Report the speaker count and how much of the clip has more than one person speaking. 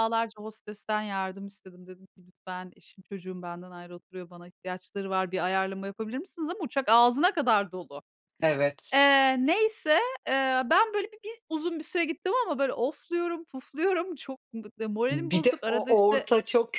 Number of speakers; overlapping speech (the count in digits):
2, about 7%